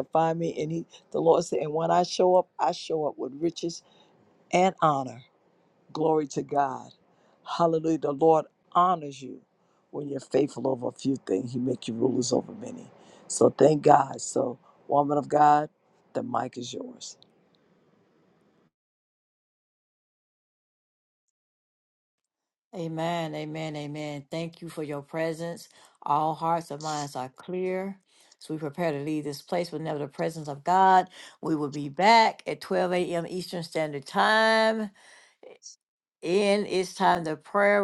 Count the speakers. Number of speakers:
two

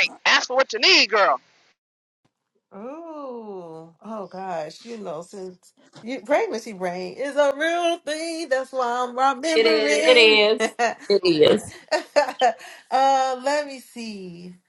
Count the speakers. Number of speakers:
three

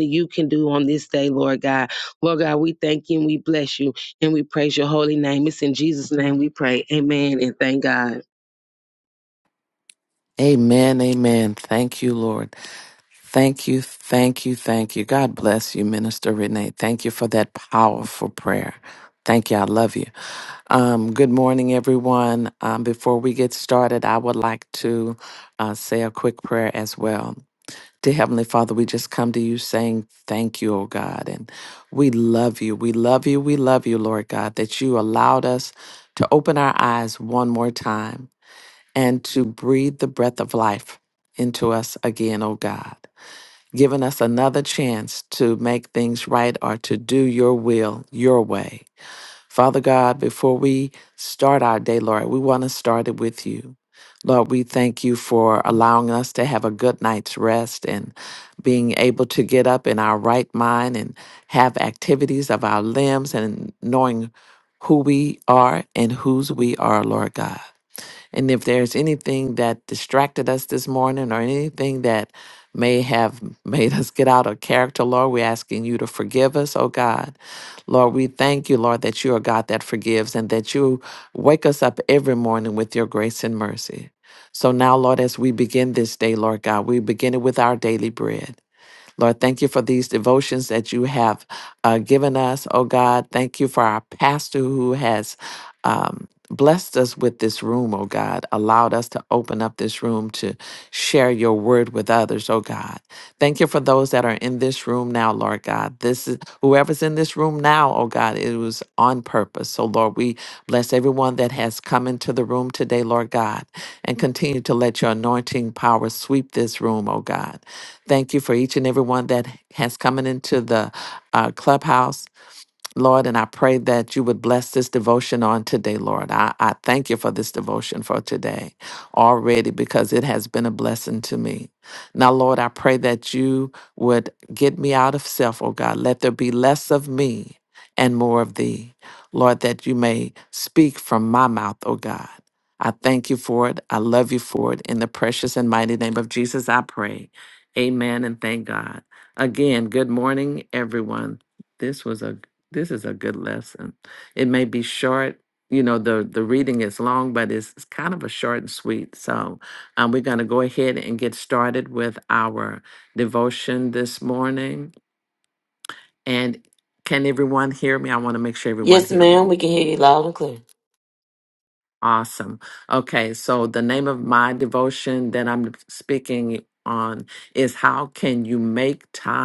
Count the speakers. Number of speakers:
three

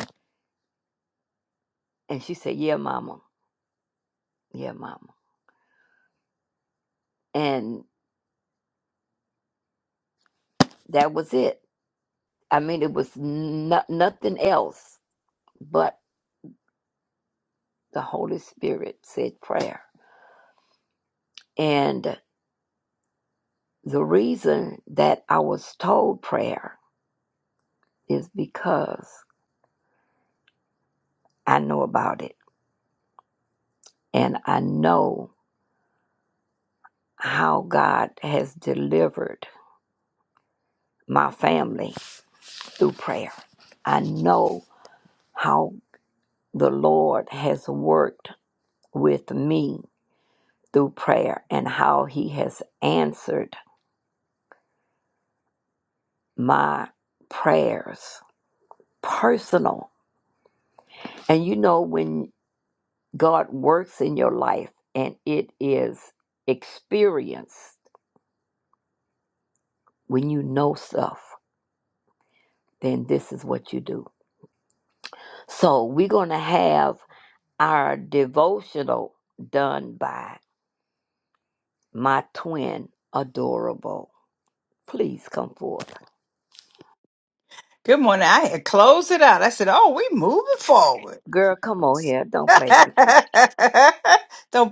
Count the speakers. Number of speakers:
two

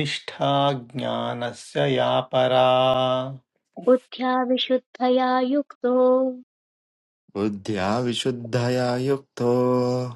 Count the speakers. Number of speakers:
three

